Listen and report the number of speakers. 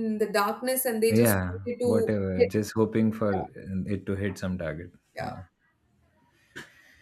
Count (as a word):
two